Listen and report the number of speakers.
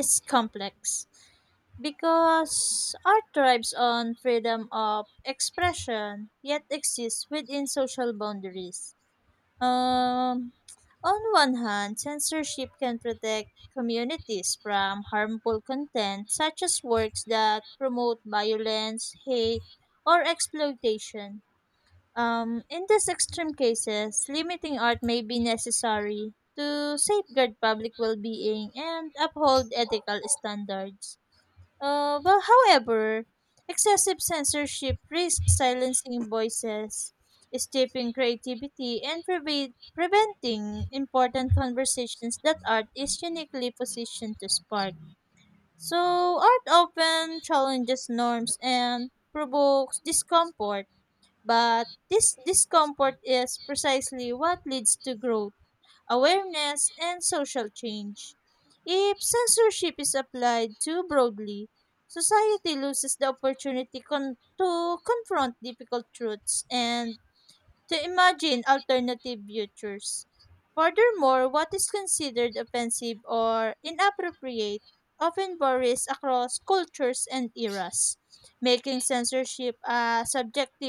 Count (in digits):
1